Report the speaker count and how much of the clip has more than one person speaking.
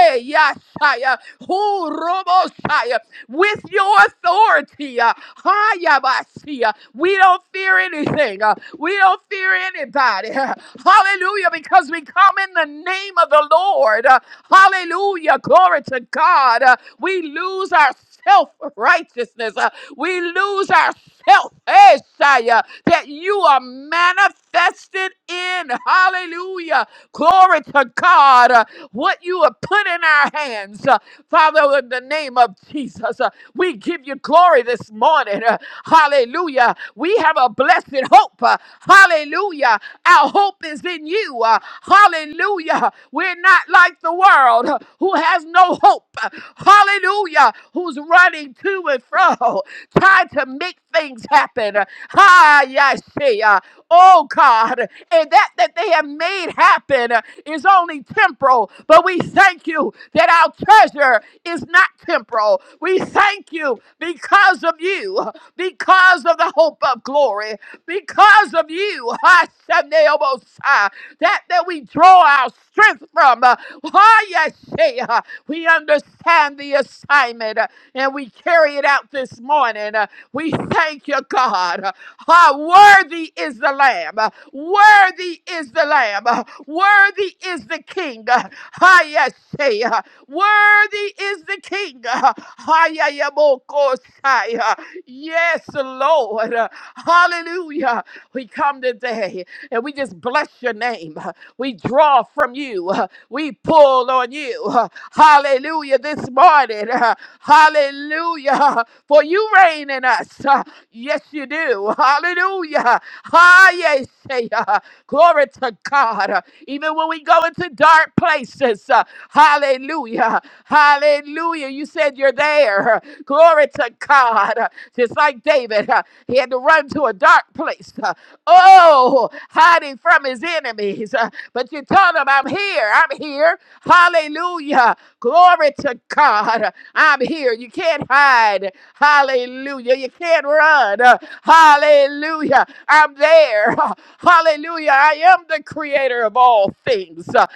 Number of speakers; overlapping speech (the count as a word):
one, no overlap